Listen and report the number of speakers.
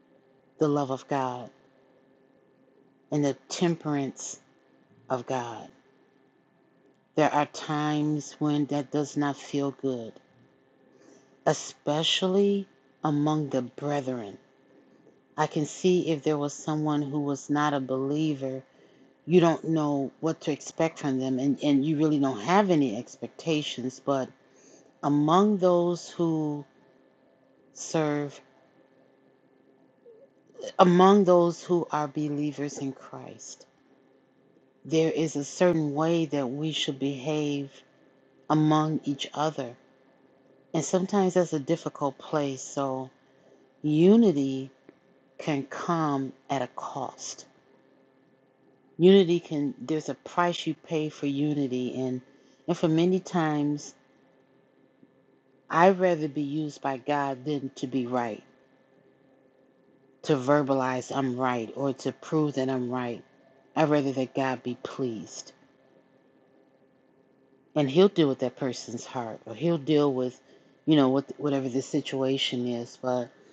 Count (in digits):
1